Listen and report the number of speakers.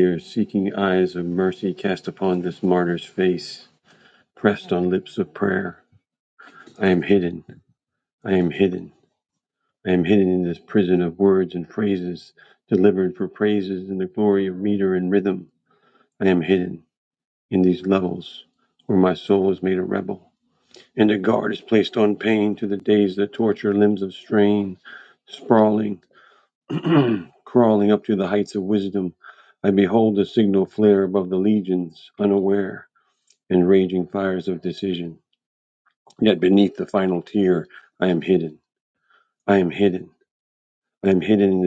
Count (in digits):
1